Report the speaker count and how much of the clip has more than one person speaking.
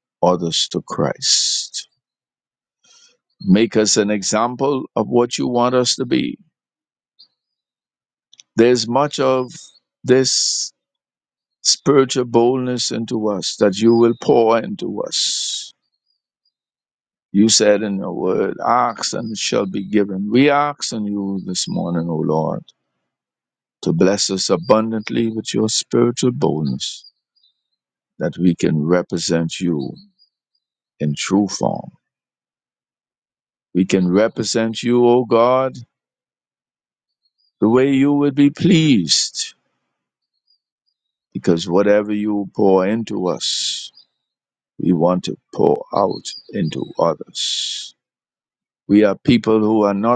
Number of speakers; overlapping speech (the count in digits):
1, no overlap